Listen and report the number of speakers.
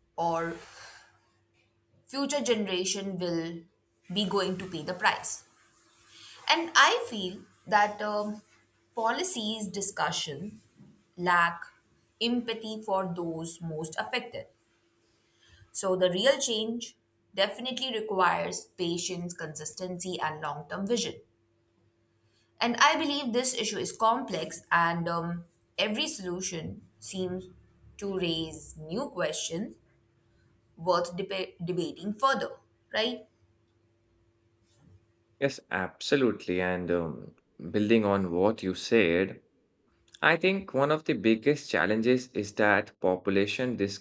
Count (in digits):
2